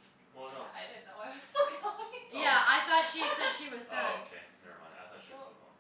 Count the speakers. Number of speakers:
3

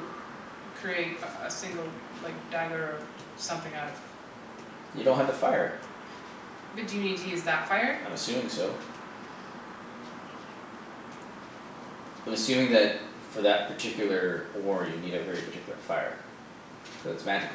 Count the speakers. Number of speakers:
2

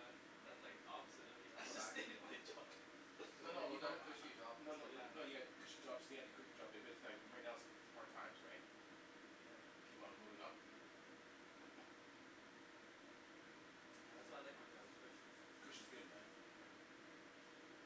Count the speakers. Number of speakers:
3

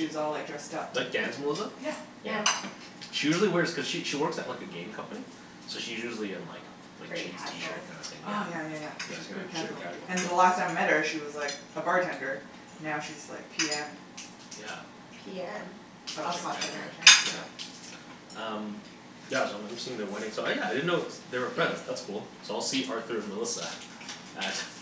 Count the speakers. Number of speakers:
3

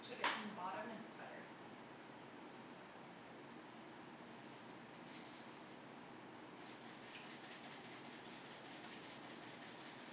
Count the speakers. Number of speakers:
1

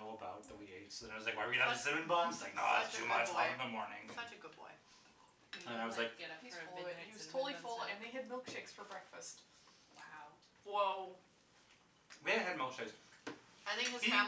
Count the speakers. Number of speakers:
4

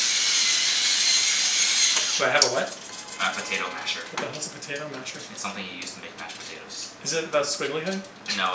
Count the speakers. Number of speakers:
2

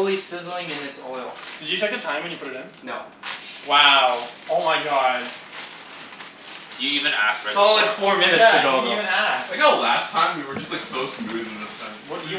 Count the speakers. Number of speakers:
4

